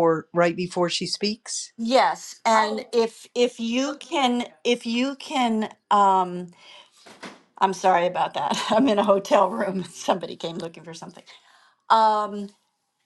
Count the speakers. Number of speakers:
two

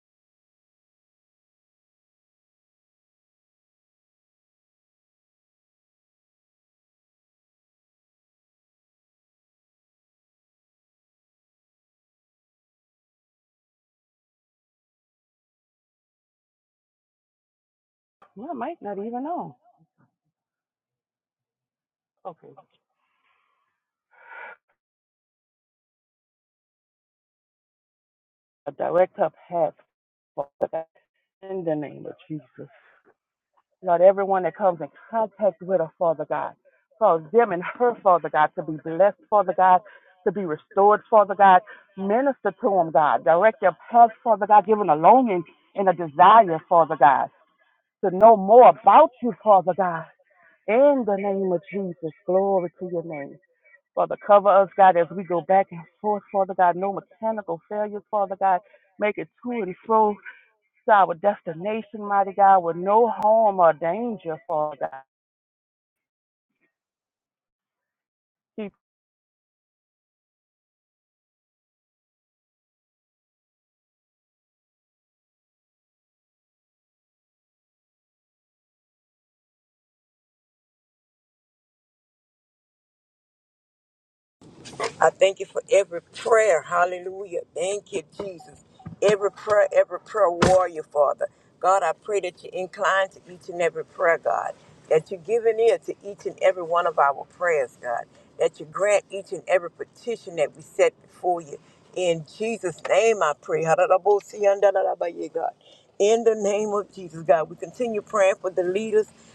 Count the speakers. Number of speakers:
two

